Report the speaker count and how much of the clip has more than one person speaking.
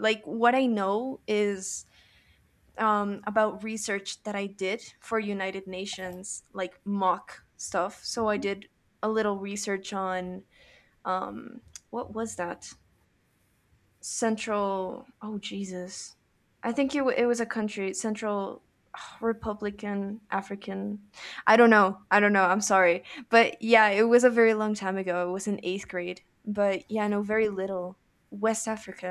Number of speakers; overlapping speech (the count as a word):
one, no overlap